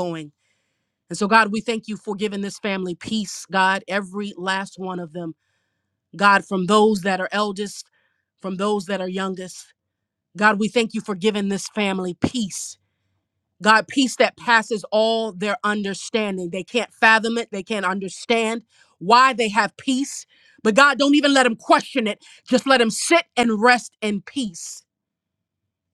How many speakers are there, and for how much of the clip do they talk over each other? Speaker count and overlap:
one, no overlap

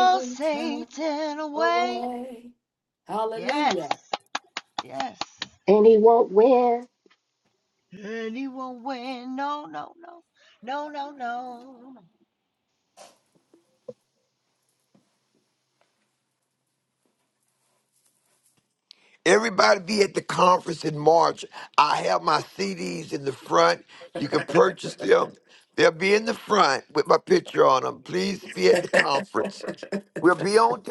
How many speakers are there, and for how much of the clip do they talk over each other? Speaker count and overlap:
four, about 5%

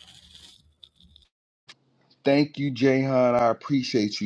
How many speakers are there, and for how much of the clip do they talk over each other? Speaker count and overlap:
one, no overlap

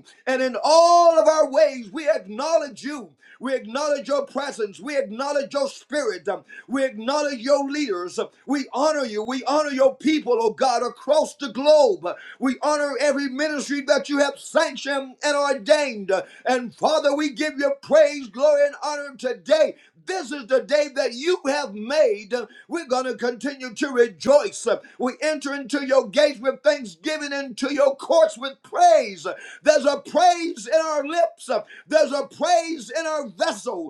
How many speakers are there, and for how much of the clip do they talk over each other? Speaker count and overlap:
one, no overlap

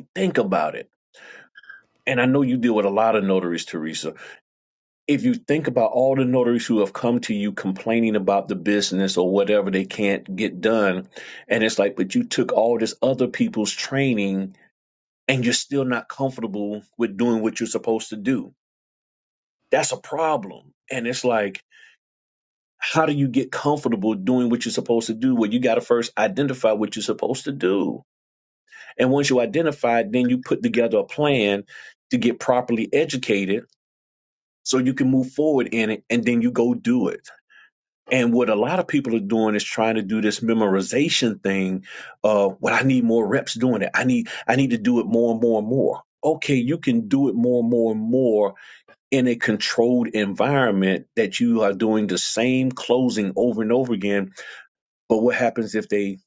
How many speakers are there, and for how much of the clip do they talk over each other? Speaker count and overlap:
one, no overlap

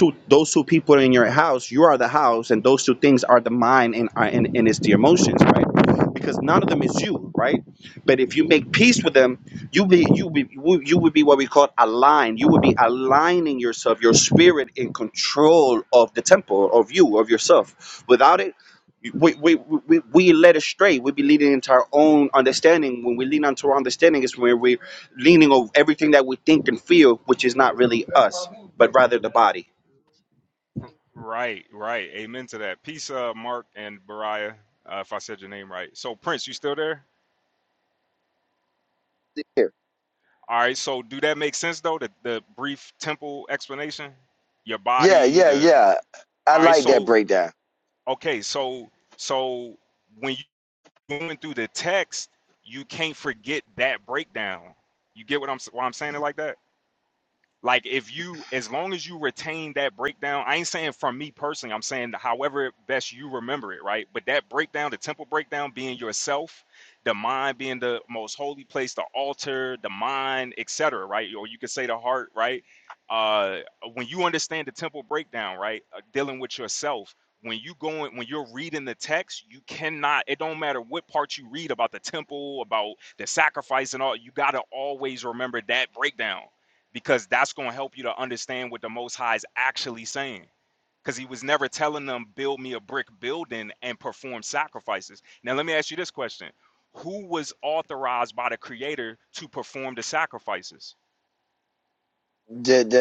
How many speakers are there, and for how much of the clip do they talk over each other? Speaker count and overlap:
three, about 1%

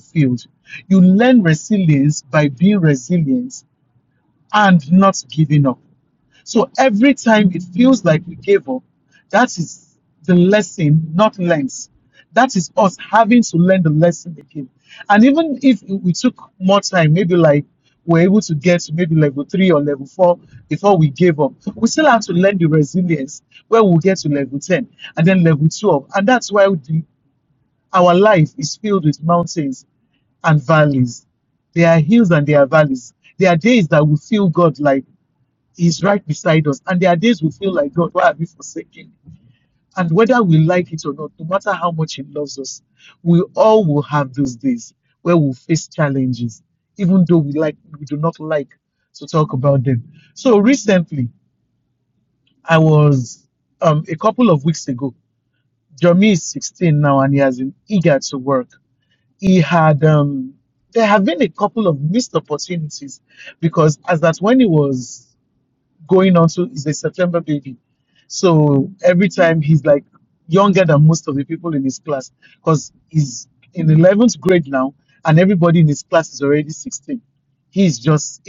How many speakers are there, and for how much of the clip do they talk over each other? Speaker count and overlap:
one, no overlap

